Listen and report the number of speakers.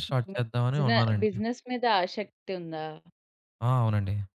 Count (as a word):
two